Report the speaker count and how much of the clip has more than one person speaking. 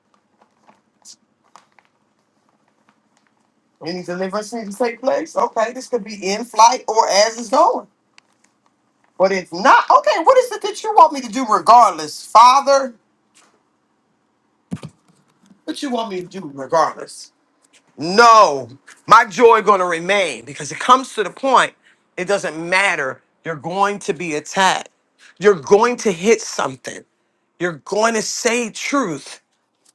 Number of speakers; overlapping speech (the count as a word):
one, no overlap